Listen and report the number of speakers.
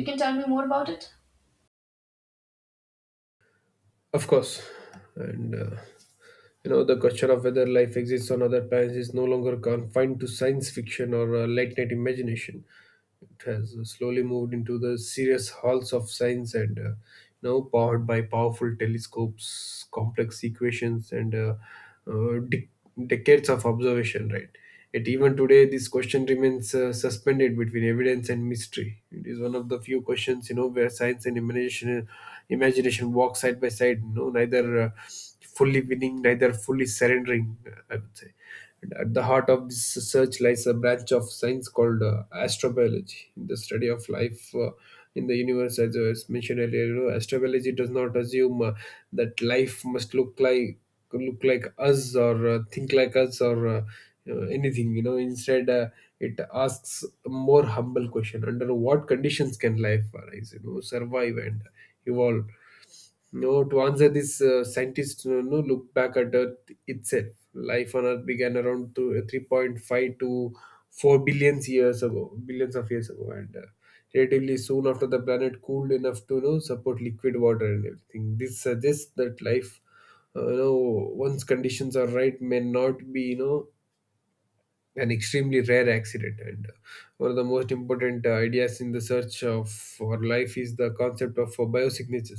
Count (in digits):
2